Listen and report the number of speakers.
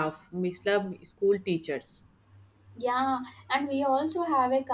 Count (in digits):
2